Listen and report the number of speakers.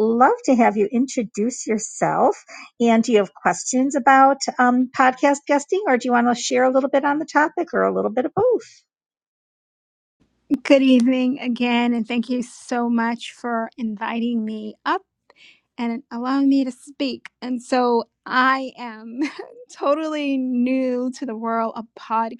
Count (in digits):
2